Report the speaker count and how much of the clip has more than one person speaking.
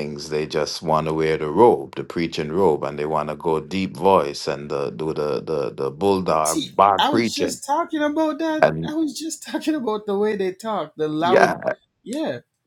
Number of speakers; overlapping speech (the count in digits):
2, about 14%